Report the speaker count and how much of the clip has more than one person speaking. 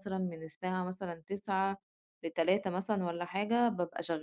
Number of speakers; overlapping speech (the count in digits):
1, no overlap